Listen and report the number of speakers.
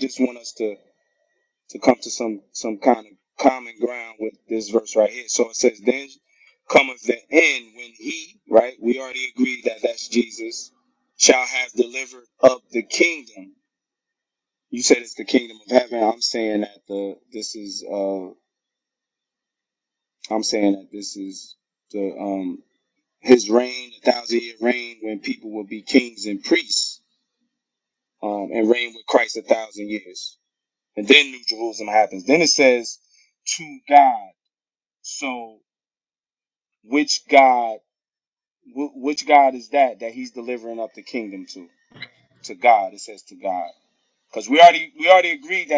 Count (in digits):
1